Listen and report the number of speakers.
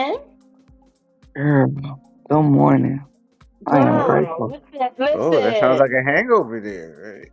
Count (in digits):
3